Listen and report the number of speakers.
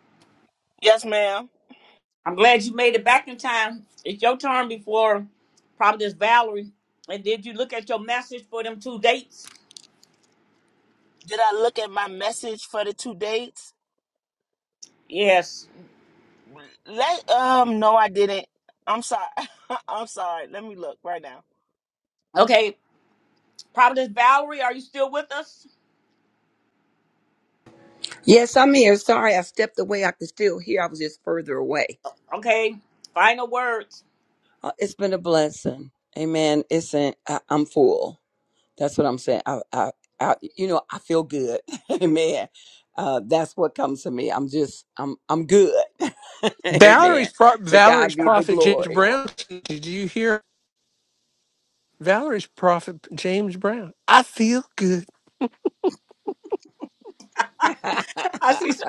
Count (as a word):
four